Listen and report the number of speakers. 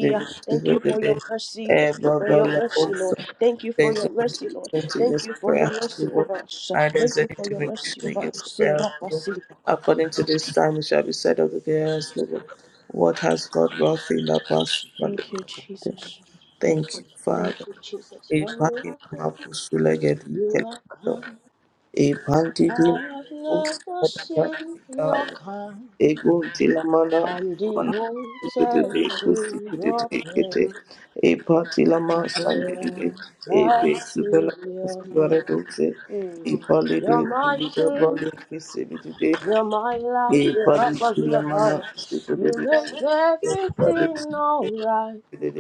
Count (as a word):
two